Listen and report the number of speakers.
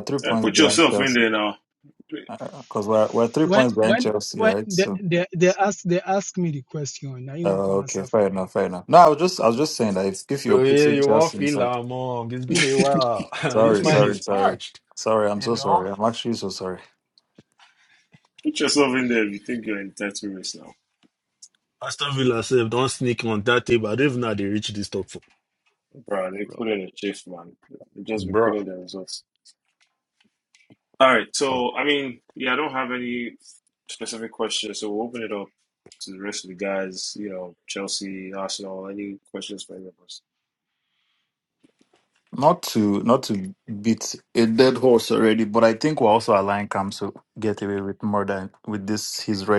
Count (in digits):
4